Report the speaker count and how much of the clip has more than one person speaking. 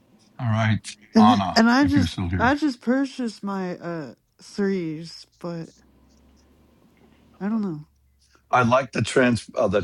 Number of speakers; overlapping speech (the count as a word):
two, about 14%